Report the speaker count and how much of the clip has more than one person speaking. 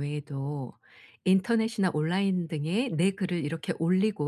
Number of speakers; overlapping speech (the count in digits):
1, no overlap